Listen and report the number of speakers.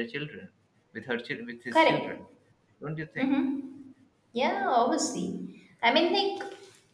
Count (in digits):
2